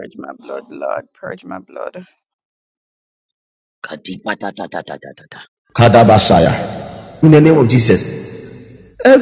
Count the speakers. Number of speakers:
3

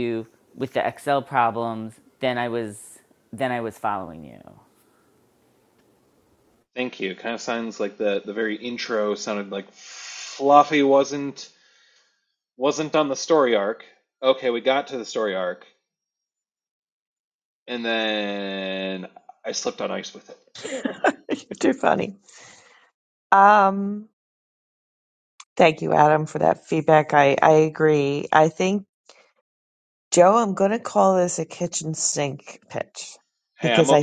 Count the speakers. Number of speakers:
3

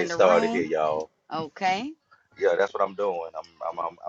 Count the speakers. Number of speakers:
2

